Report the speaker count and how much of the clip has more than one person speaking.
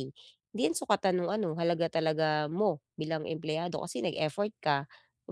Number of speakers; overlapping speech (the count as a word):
one, no overlap